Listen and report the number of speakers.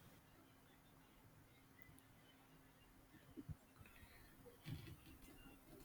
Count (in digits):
0